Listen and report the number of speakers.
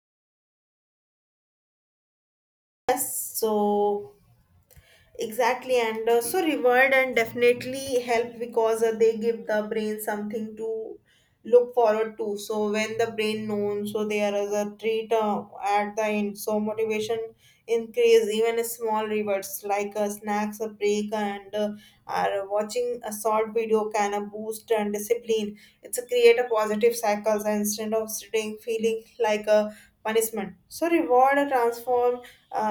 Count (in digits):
1